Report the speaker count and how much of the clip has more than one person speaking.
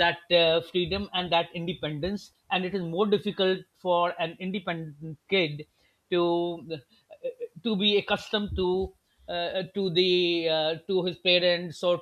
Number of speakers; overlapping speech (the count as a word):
one, no overlap